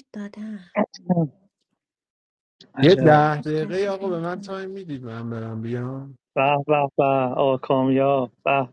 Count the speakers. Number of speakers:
three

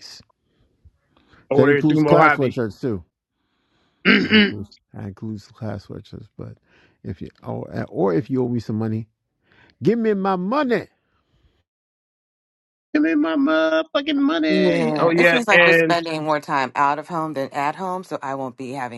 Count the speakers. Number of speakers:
three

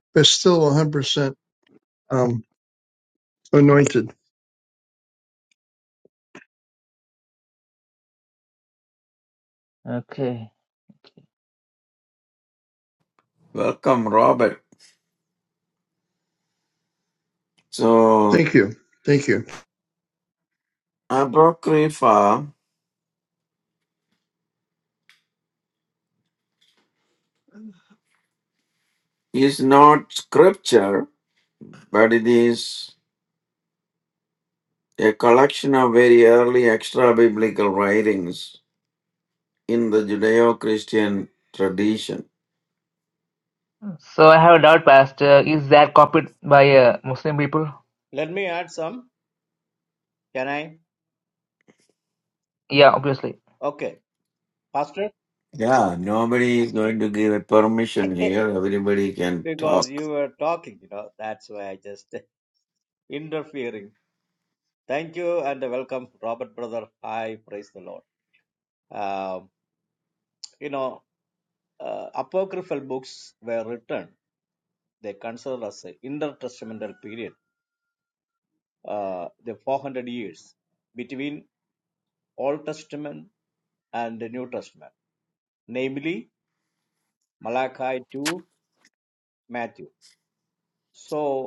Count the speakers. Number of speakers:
four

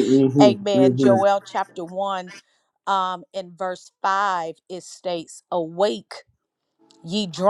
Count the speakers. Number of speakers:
two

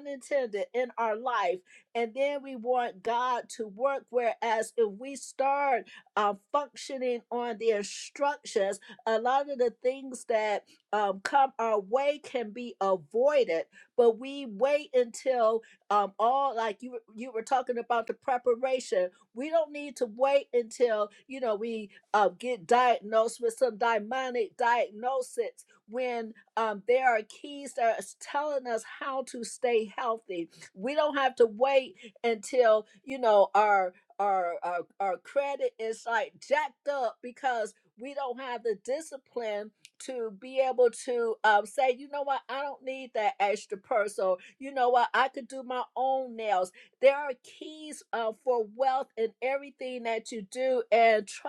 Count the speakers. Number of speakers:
one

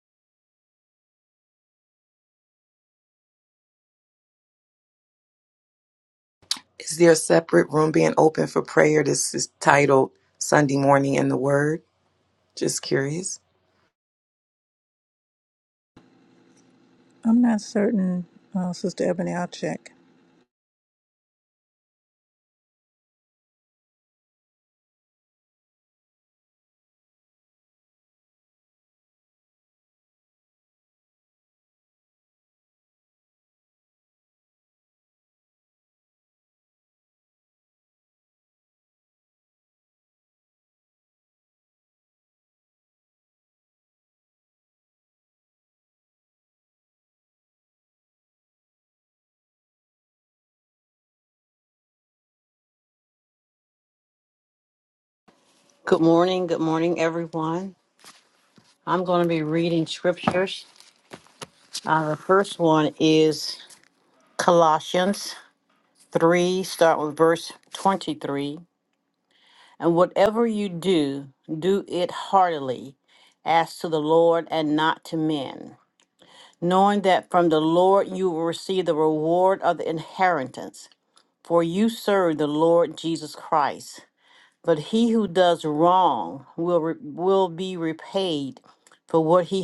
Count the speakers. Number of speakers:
three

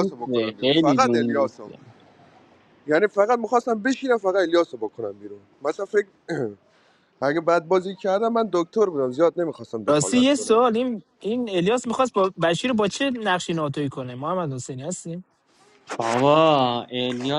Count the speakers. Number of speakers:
three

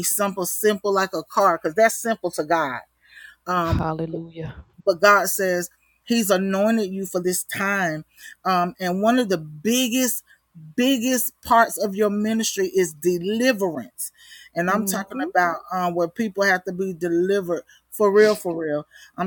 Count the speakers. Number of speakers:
two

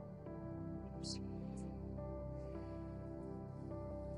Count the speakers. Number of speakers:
zero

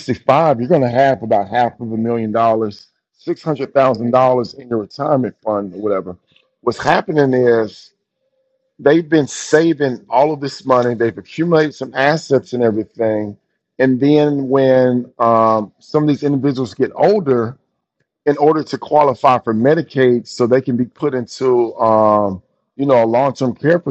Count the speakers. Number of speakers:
one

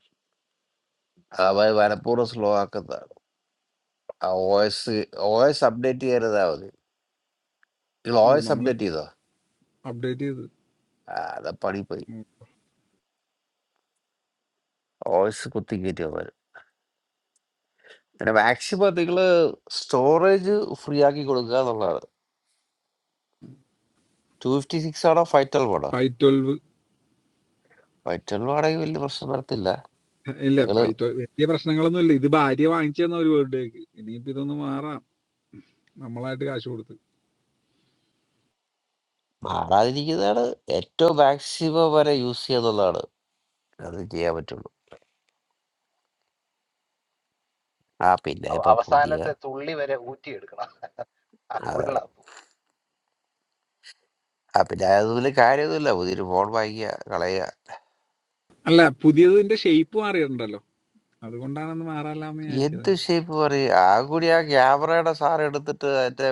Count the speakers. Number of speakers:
three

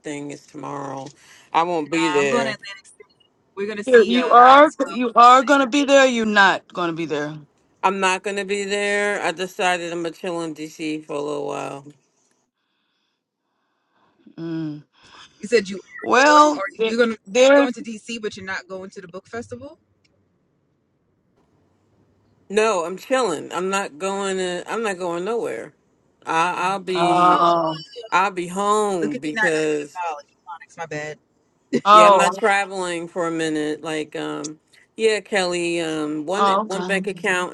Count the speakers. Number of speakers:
three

